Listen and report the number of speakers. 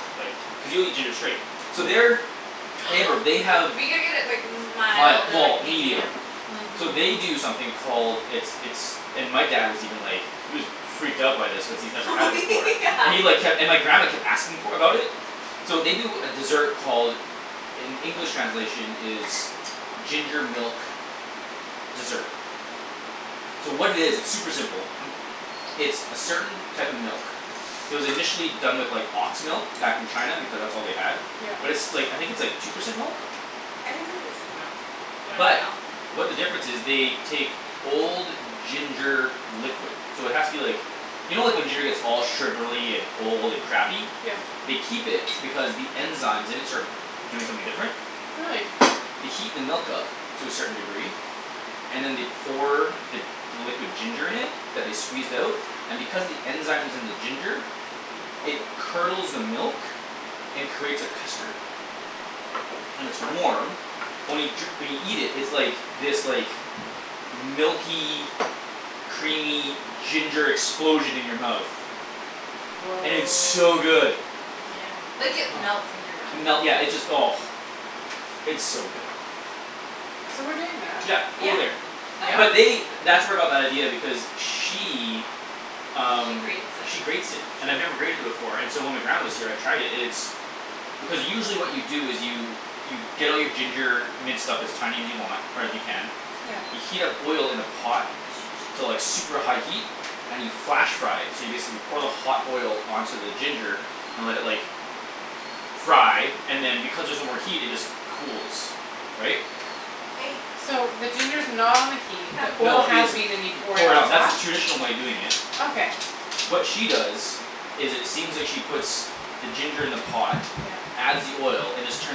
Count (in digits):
3